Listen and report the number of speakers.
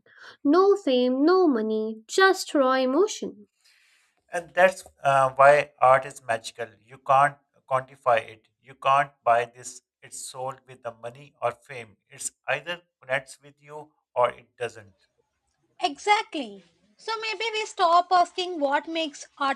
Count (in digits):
3